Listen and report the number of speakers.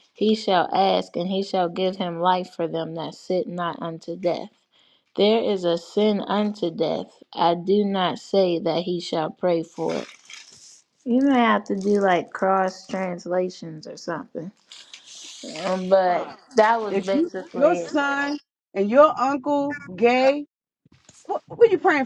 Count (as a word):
two